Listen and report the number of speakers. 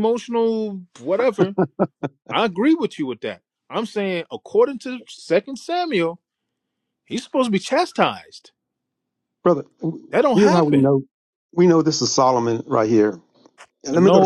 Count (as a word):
two